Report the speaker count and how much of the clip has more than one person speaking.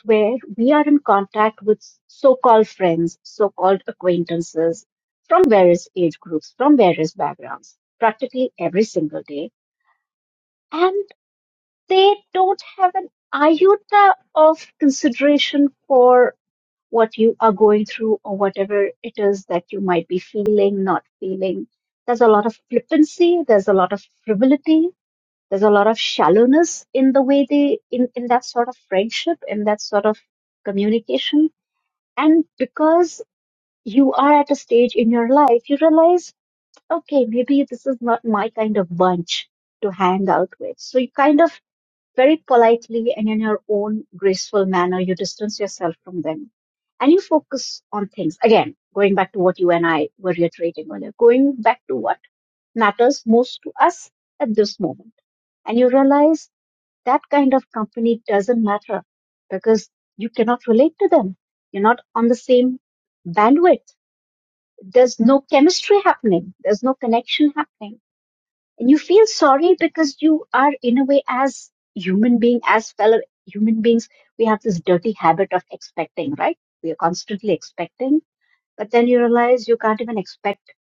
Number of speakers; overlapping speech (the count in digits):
1, no overlap